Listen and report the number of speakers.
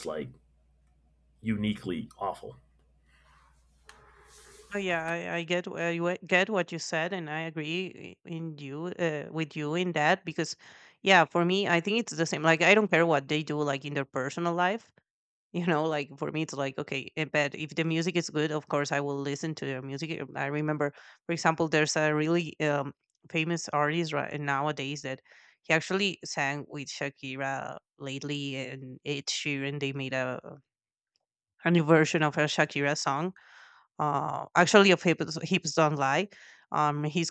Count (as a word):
two